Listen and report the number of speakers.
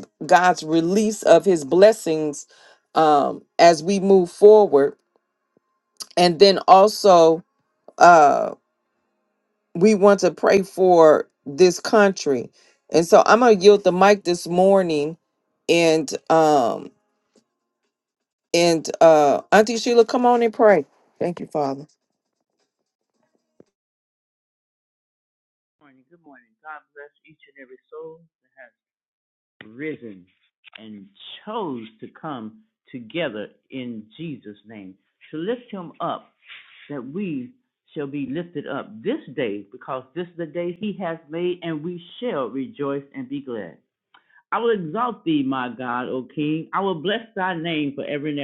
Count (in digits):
2